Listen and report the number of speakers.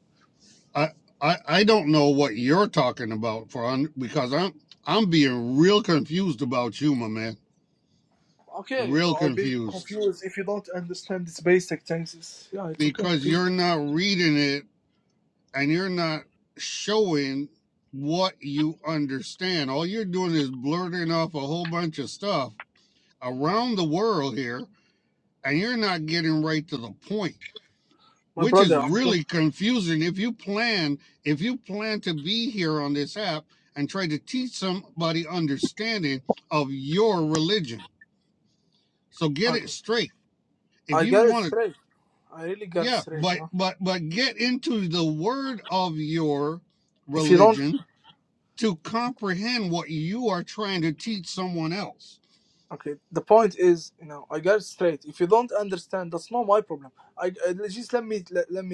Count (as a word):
two